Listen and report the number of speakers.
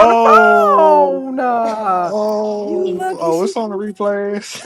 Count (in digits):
2